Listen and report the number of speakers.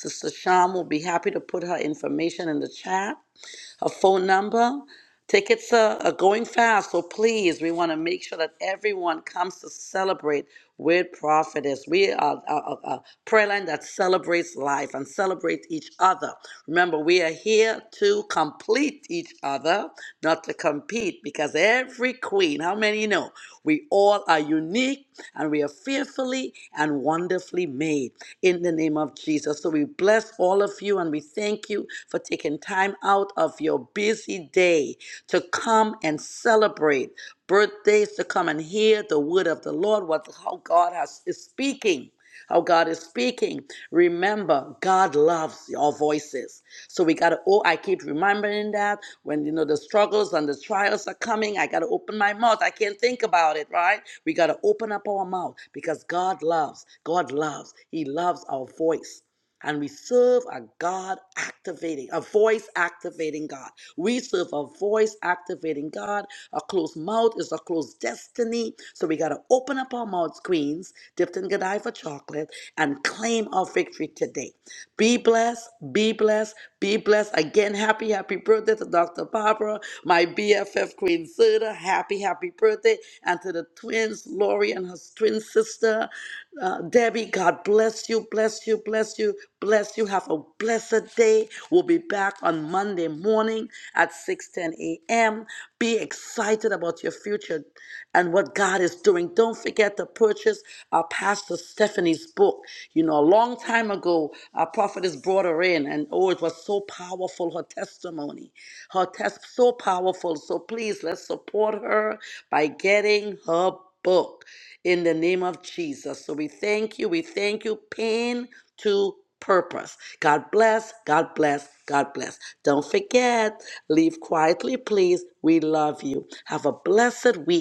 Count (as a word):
one